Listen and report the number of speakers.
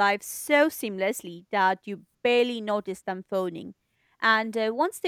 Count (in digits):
1